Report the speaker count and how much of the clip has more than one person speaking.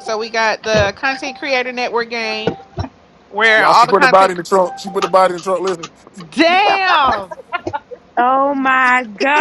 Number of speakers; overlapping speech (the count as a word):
three, about 9%